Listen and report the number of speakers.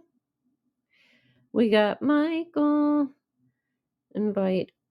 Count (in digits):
1